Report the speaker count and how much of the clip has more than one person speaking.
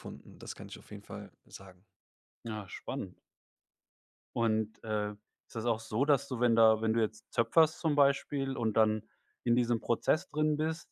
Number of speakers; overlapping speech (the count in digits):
2, no overlap